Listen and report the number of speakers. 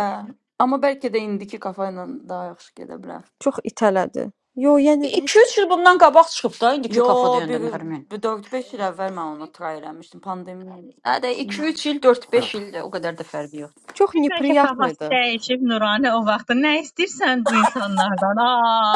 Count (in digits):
4